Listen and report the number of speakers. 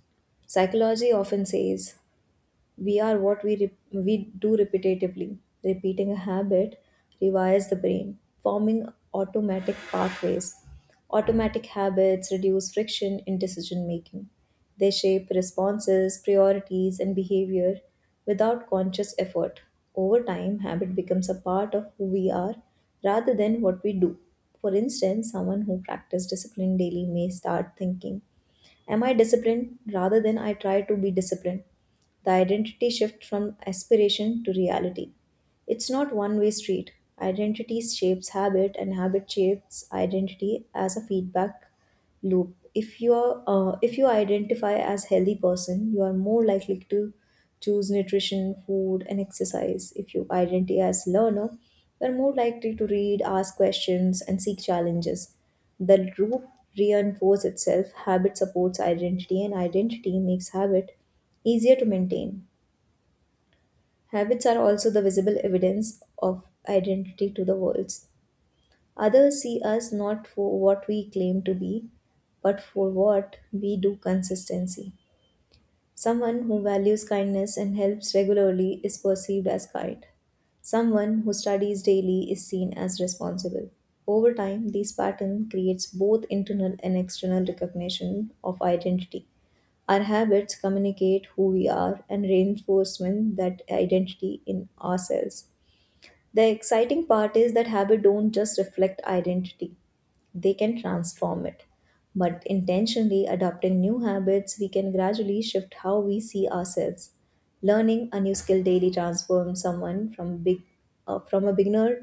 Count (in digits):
1